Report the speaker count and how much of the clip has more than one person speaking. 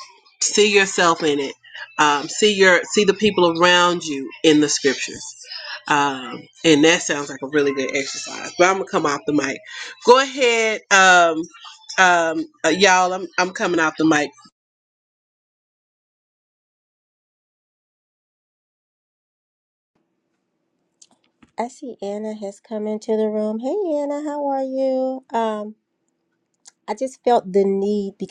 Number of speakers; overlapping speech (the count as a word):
two, no overlap